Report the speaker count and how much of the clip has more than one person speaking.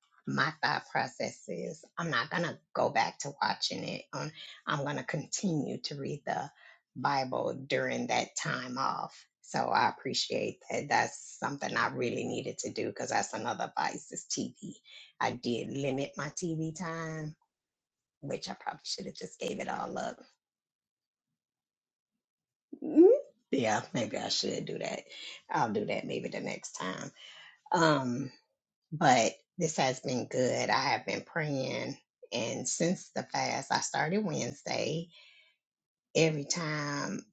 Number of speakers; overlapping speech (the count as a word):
one, no overlap